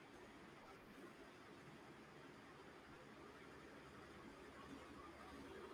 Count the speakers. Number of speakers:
0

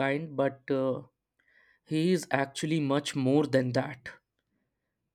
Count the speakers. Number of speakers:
1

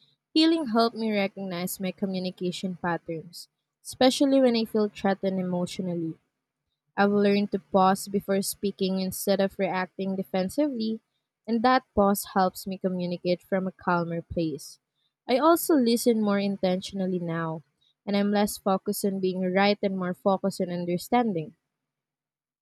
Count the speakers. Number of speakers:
1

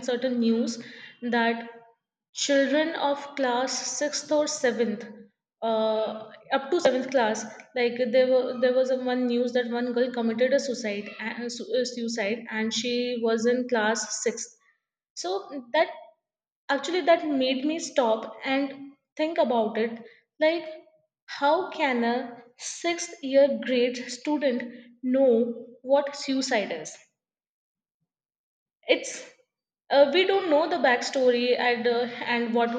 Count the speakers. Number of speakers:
1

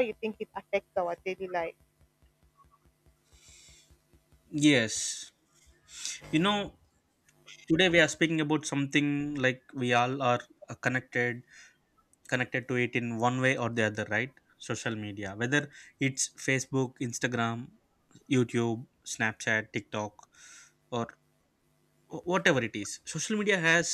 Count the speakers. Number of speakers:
2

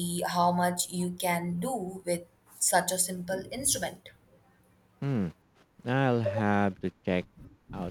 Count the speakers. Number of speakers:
2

